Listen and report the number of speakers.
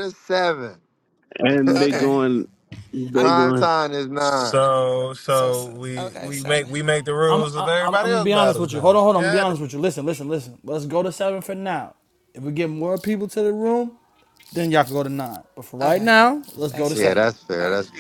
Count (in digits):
4